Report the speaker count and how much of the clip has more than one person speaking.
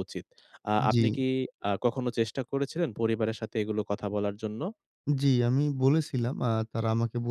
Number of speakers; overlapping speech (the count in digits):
2, about 3%